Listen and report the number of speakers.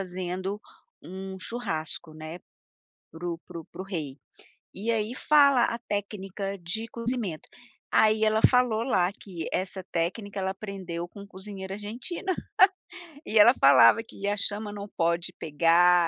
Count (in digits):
1